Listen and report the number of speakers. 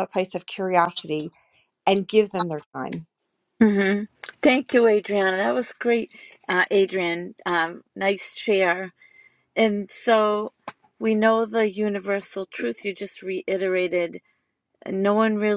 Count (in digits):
2